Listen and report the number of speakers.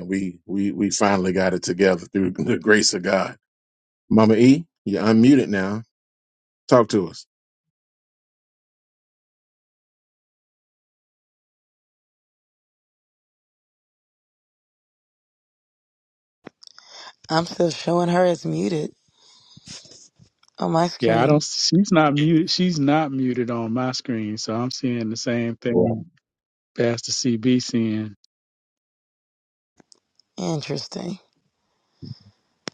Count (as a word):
three